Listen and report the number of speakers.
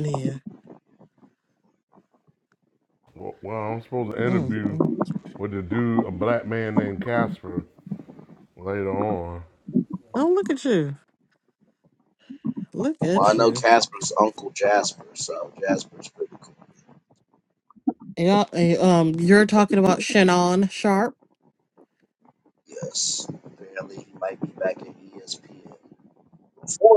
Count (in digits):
3